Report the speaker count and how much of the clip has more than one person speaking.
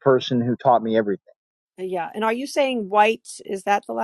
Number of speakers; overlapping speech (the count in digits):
2, no overlap